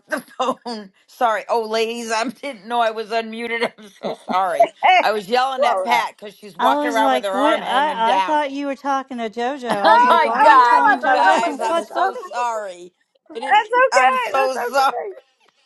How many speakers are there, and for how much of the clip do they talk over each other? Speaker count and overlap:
3, about 40%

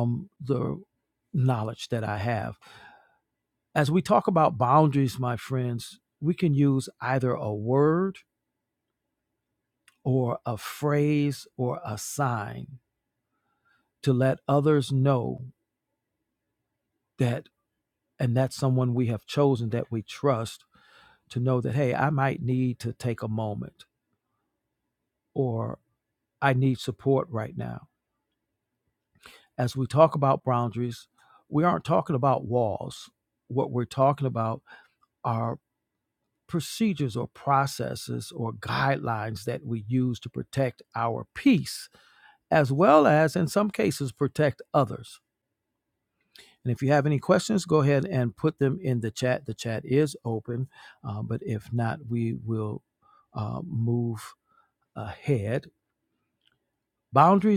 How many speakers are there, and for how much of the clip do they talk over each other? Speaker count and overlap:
1, no overlap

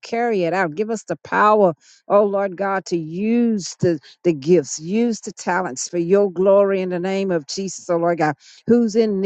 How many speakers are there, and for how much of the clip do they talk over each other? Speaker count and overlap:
1, no overlap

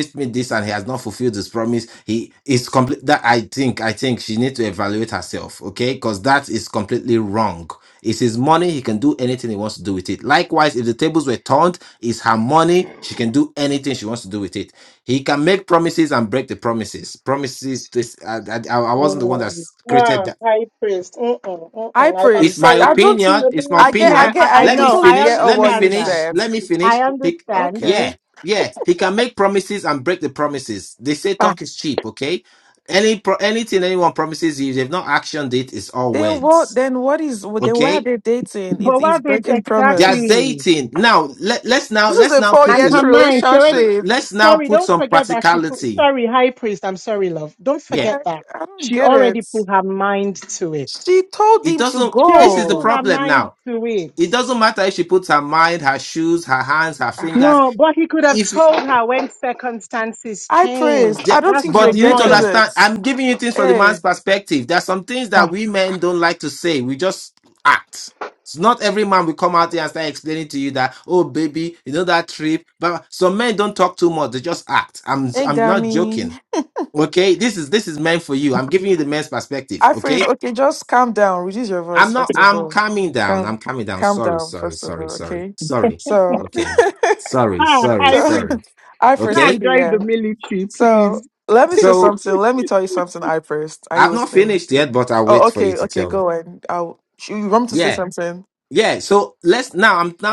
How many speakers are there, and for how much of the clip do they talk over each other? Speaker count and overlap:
3, about 27%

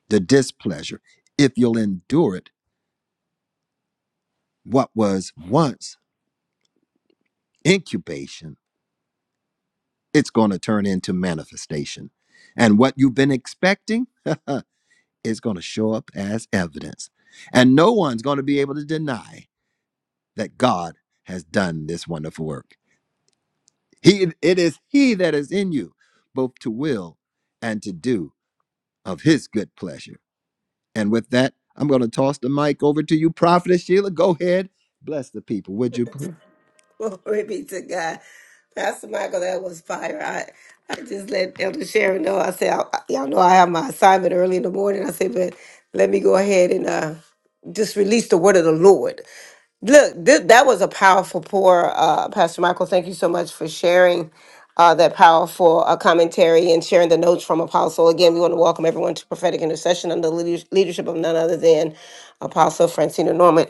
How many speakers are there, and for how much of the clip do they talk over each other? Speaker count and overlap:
2, no overlap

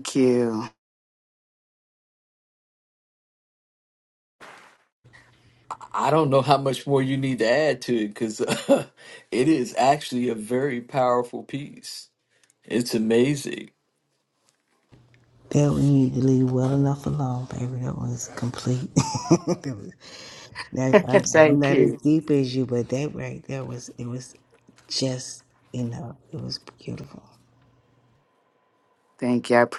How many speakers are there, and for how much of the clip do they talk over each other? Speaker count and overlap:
3, about 3%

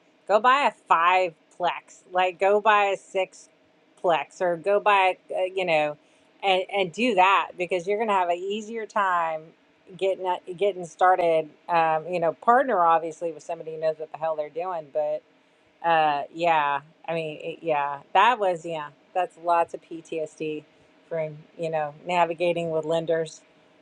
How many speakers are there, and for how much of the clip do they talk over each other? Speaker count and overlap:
1, no overlap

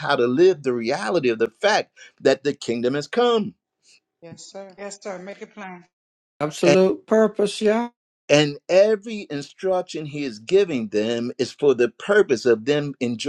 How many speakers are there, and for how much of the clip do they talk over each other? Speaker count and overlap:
3, no overlap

